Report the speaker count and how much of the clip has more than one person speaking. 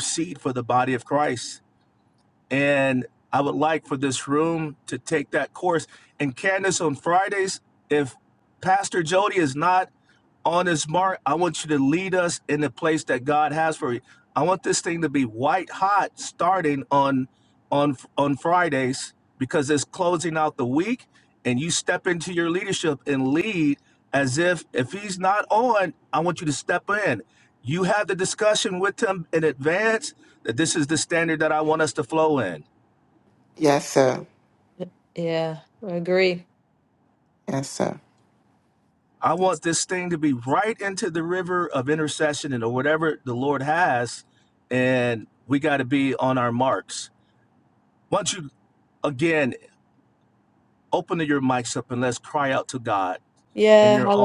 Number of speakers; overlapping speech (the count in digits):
3, about 1%